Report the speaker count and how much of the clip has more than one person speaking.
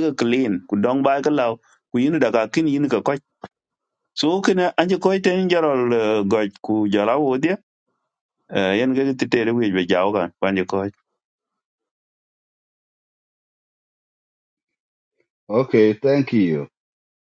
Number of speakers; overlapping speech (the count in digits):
2, no overlap